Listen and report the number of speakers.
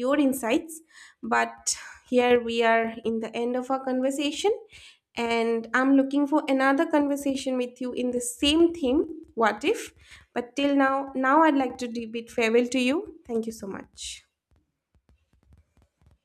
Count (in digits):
1